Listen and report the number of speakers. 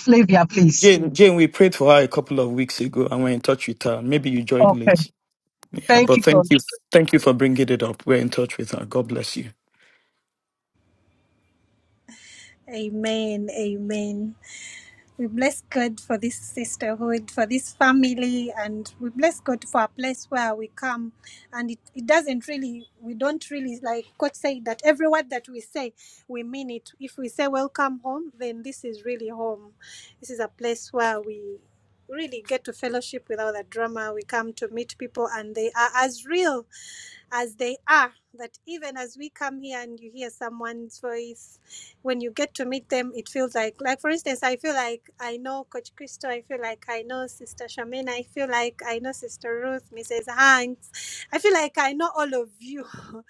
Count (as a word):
three